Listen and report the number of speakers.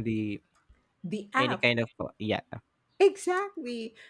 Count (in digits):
2